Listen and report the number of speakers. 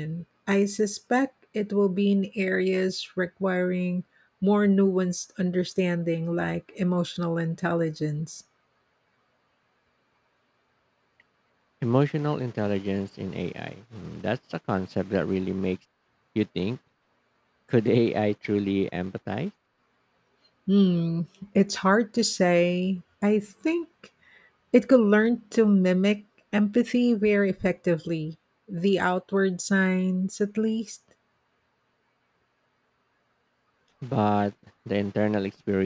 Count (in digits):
2